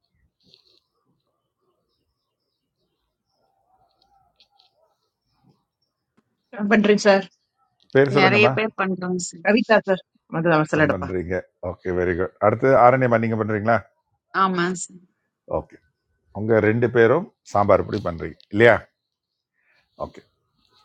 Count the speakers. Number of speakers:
3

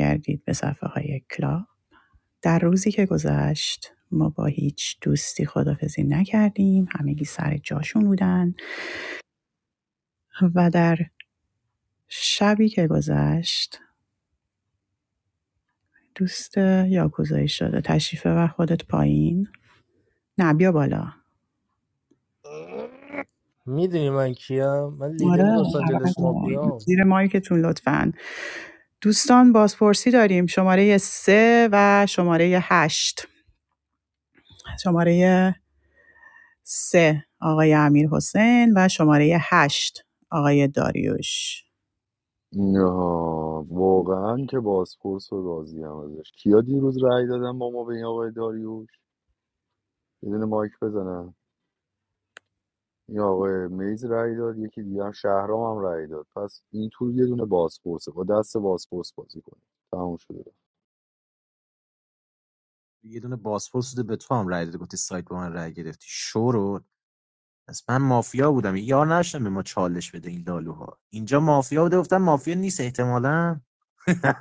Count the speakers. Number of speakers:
4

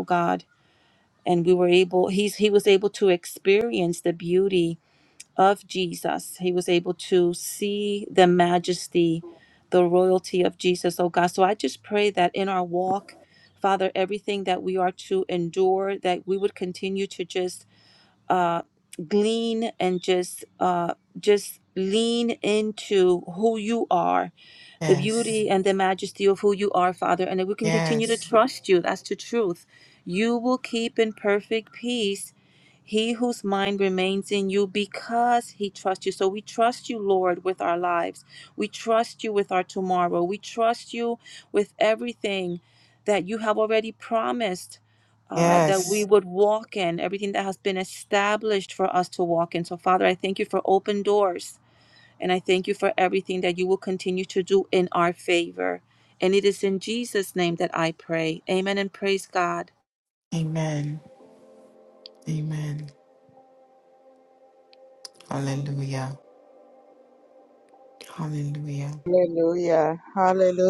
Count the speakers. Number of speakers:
3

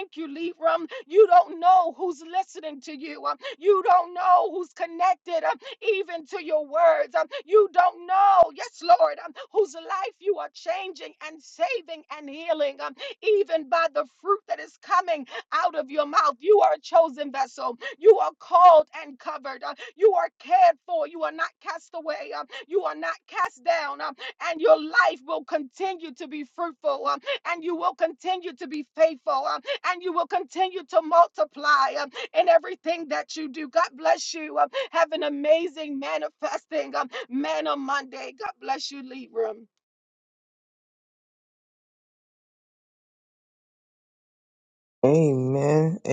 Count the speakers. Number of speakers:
2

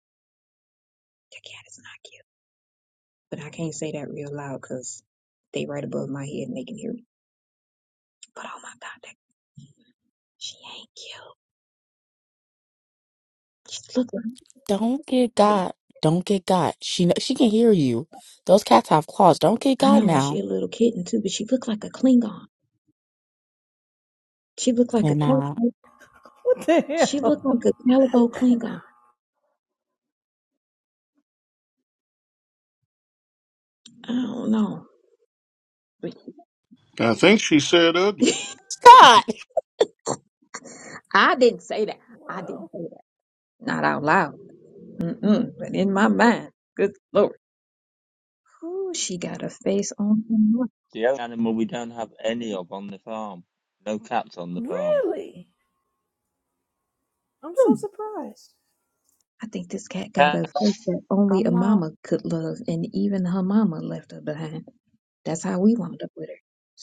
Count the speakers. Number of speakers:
5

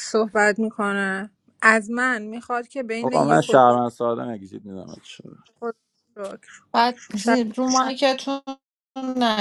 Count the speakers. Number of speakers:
3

